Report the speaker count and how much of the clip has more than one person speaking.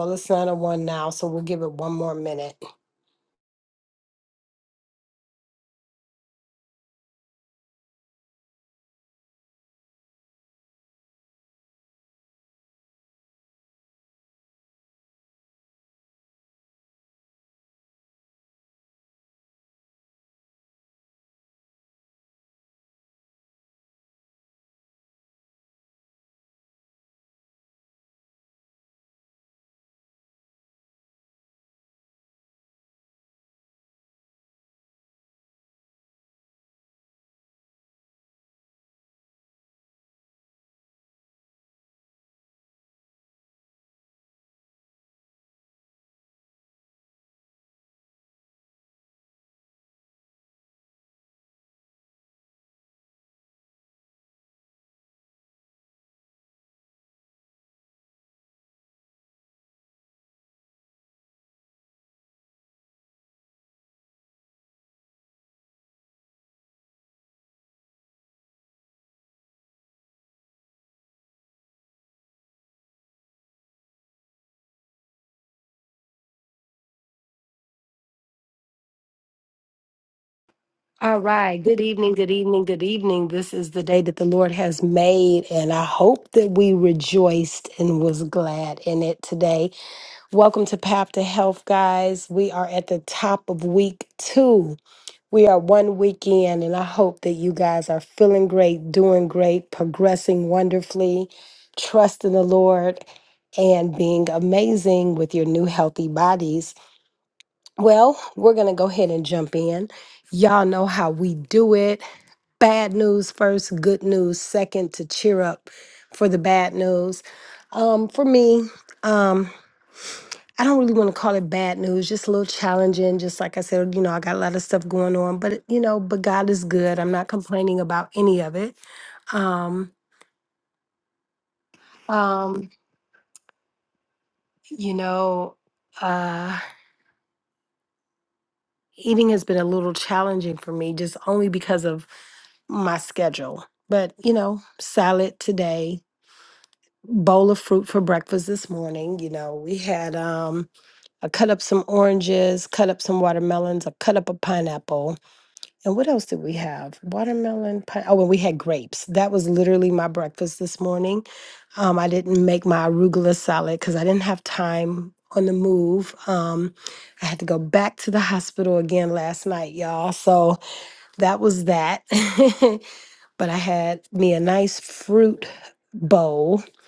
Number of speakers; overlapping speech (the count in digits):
1, no overlap